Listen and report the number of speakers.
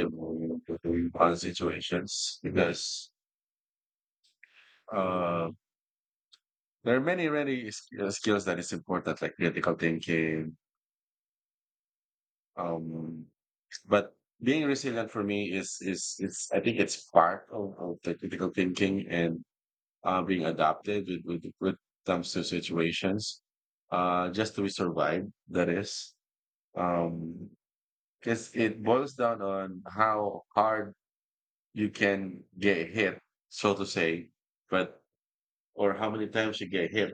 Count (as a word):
one